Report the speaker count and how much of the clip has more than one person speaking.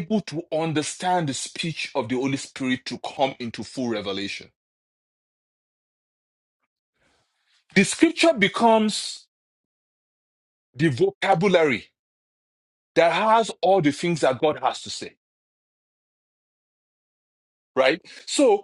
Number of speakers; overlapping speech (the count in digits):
1, no overlap